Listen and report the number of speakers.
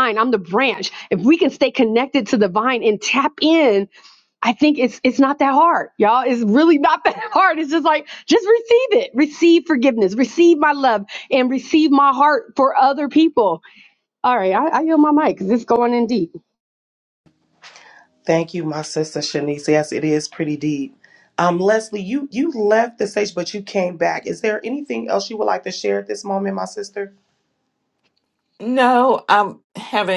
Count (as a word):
three